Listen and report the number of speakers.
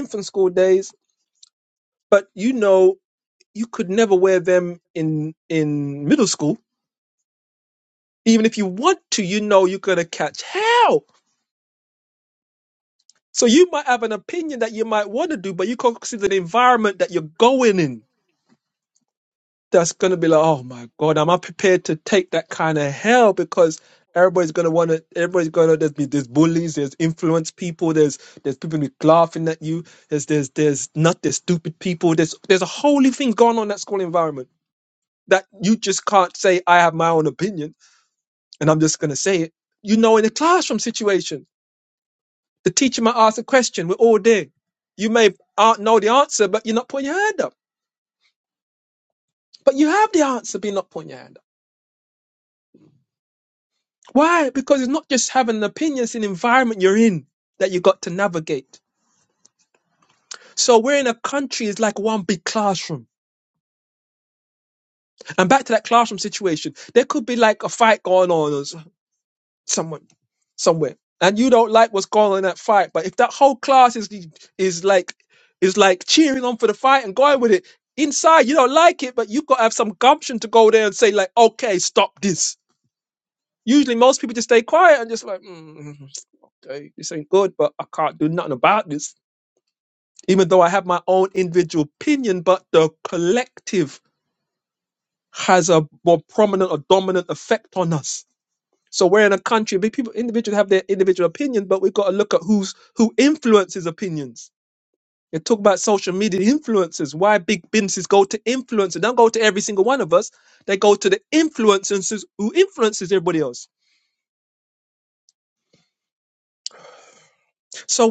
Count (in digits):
1